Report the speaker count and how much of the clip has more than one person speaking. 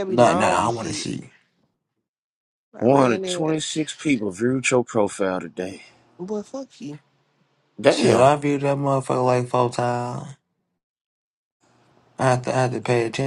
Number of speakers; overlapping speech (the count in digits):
3, about 16%